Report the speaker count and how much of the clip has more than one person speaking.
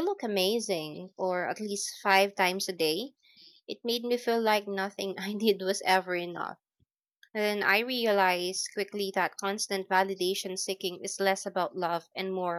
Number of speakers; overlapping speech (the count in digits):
1, no overlap